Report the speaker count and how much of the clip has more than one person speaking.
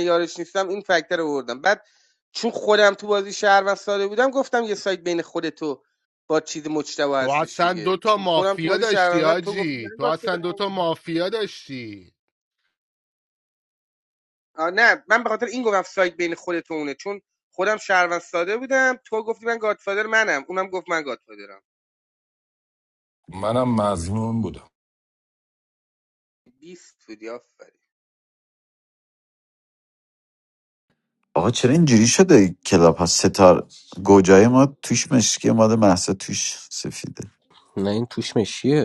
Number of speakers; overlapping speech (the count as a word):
five, about 8%